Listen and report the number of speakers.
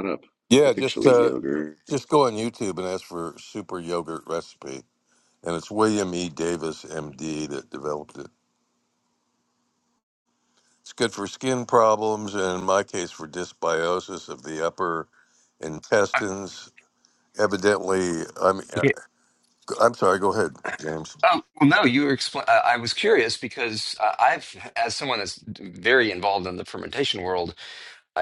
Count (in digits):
3